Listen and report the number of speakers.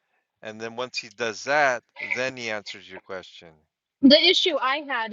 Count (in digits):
2